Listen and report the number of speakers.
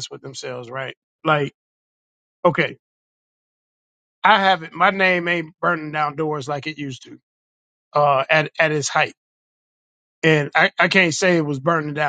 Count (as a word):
one